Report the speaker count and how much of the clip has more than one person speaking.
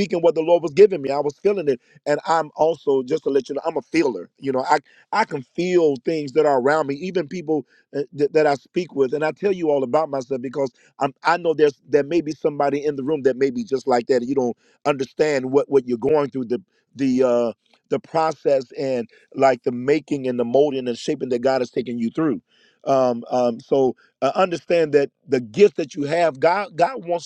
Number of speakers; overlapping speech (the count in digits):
1, no overlap